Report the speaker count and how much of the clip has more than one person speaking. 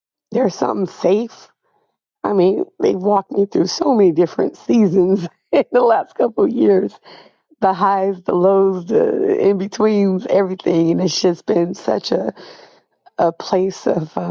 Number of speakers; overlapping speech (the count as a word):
one, no overlap